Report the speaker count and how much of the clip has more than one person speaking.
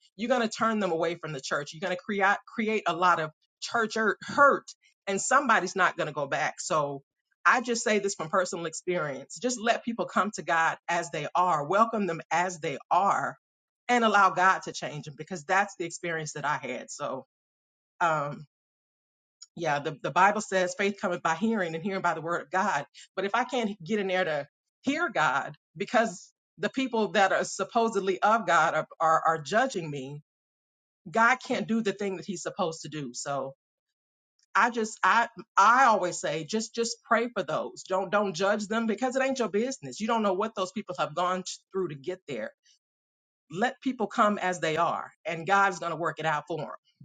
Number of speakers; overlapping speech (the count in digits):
1, no overlap